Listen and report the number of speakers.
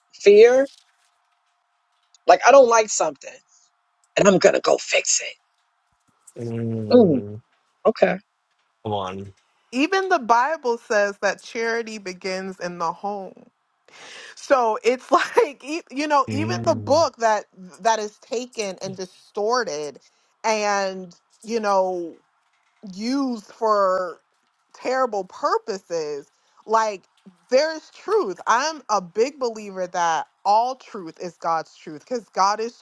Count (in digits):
3